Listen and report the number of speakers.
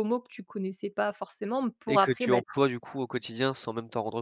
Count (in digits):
2